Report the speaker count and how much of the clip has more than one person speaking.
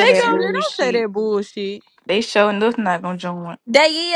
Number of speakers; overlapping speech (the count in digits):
3, about 25%